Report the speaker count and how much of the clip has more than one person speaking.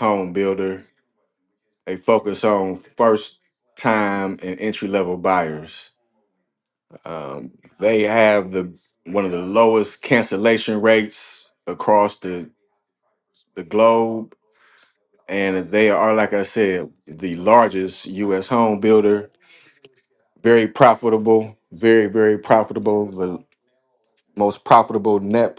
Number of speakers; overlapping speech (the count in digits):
1, no overlap